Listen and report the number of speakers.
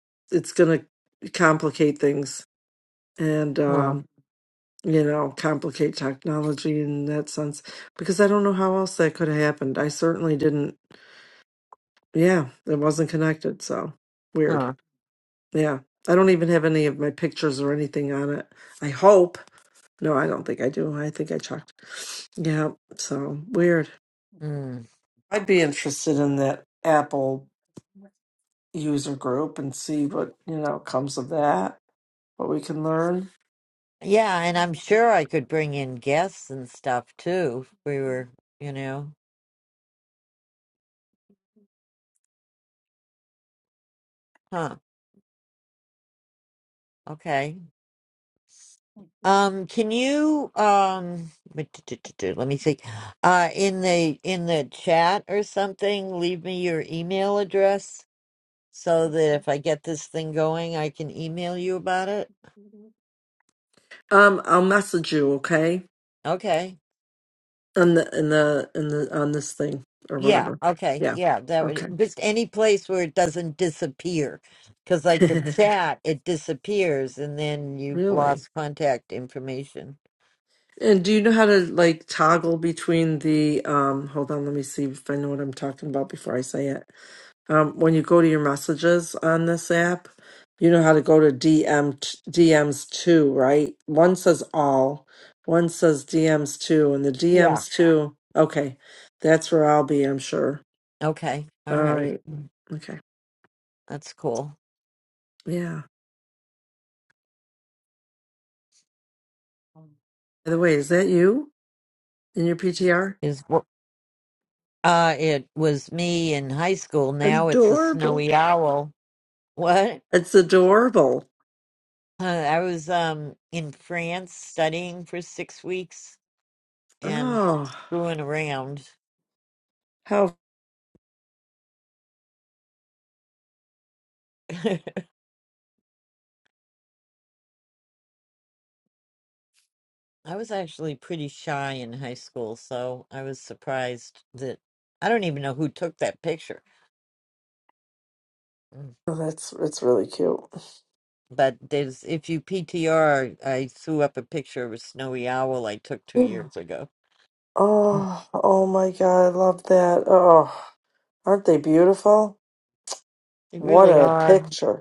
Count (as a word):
two